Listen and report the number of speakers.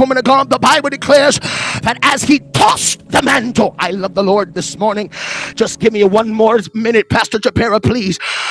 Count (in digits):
1